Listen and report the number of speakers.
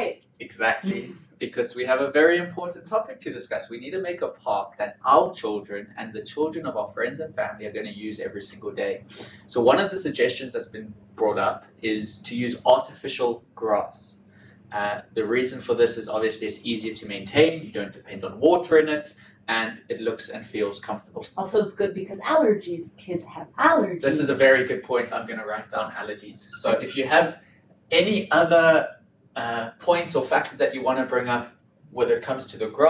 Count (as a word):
two